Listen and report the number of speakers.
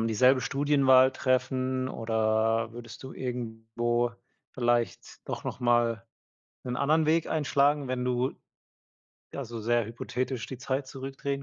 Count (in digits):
1